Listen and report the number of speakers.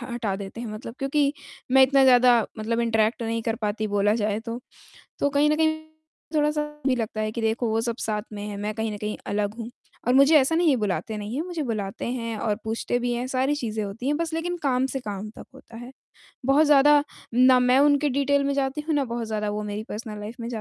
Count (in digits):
1